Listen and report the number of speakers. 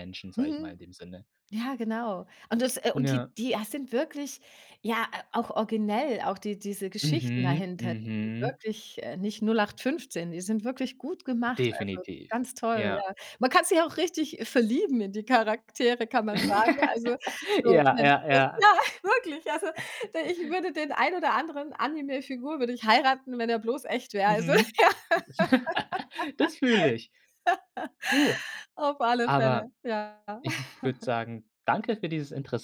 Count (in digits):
2